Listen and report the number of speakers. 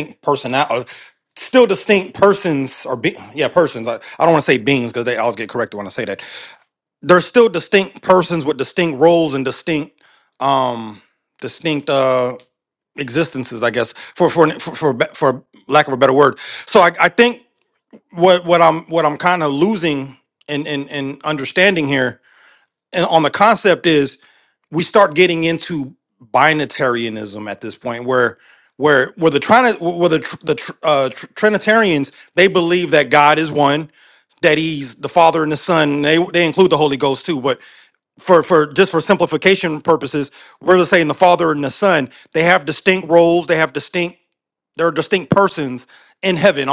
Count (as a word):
one